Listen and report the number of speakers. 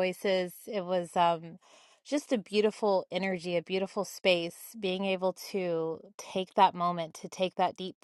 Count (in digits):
1